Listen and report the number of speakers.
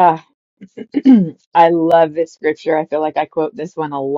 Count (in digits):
1